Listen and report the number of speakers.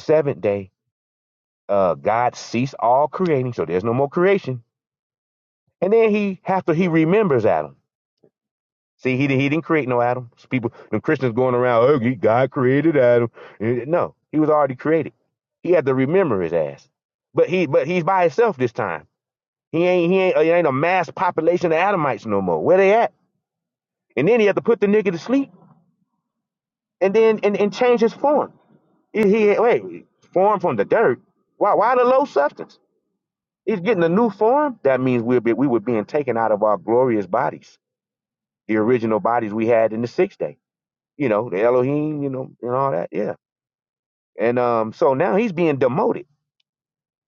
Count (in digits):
1